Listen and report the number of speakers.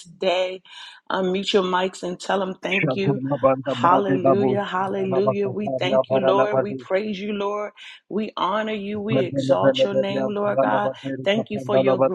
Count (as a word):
two